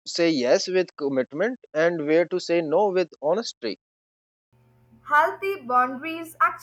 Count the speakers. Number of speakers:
2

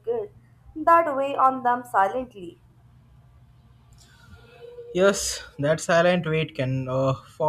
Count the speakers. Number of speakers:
2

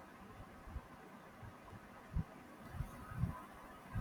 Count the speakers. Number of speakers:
0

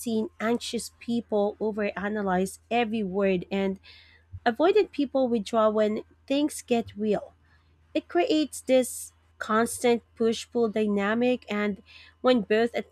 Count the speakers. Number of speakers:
1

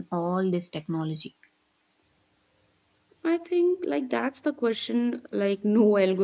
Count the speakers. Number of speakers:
2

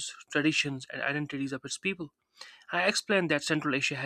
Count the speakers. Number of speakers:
1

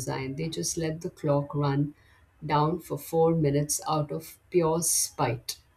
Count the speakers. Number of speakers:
1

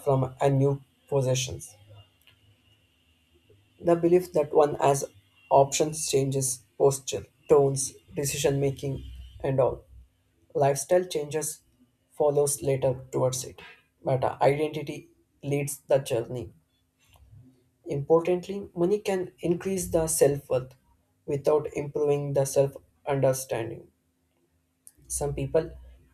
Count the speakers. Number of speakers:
1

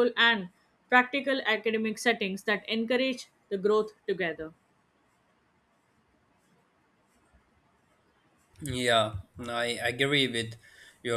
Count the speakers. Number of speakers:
2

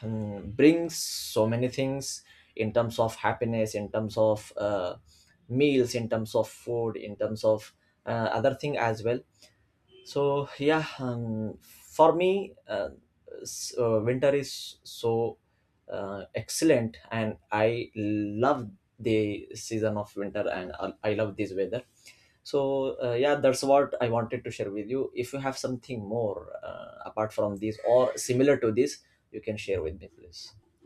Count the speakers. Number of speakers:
1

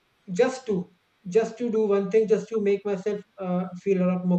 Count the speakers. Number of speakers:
1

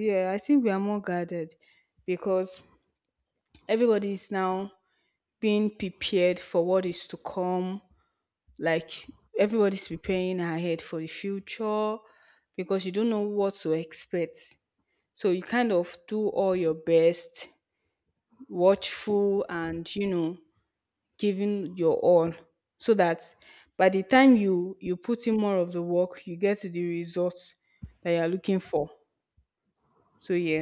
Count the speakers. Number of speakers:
1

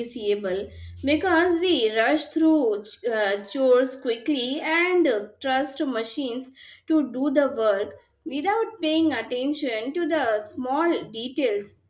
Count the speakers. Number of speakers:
1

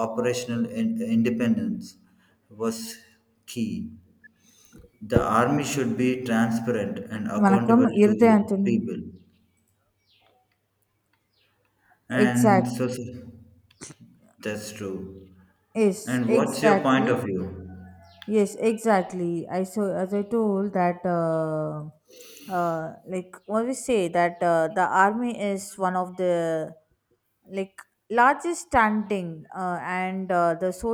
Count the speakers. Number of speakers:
2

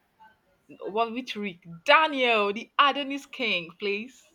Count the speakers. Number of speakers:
1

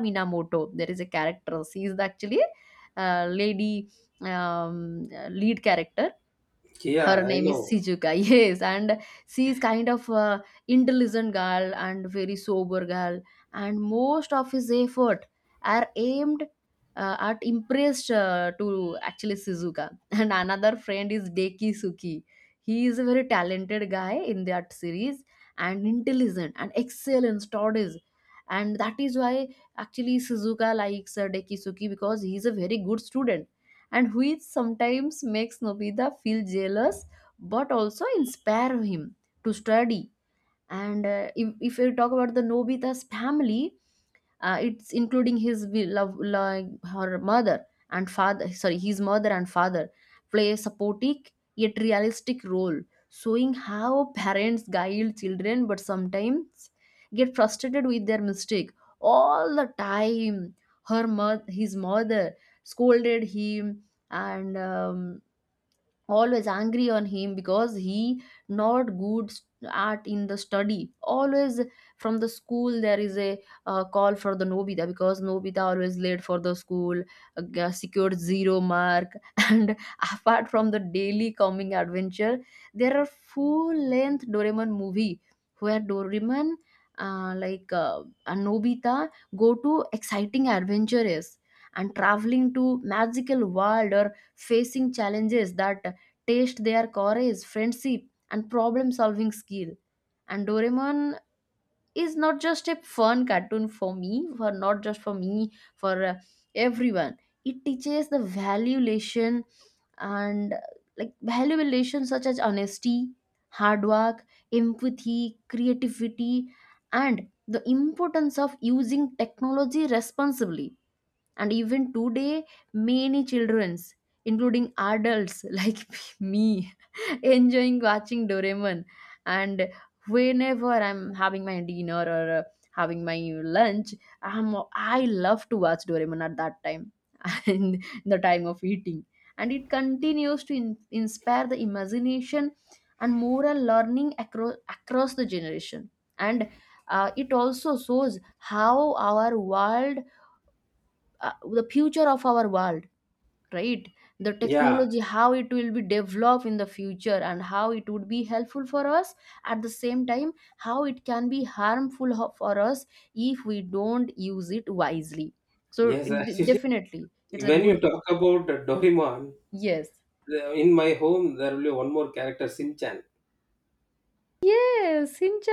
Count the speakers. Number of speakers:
2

